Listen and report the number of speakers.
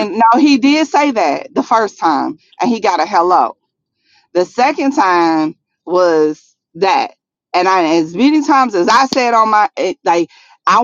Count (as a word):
one